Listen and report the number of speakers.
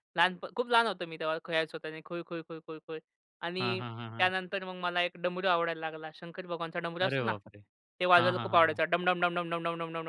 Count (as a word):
two